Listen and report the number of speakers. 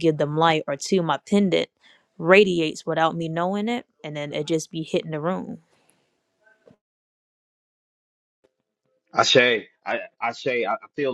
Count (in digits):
2